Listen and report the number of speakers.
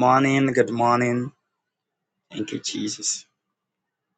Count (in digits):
1